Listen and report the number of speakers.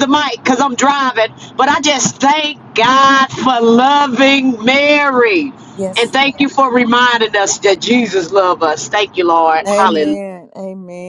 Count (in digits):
2